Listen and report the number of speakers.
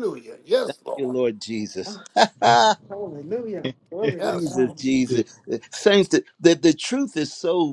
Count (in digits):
3